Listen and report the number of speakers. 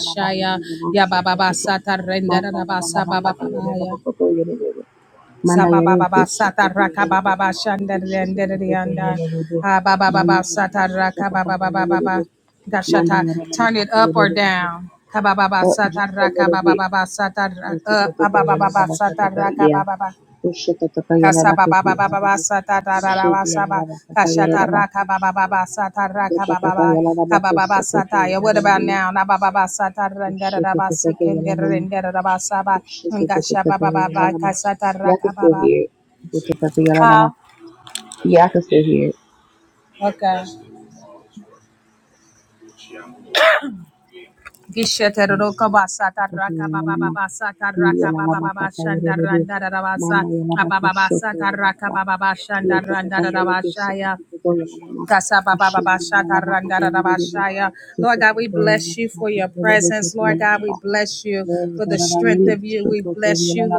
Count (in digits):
2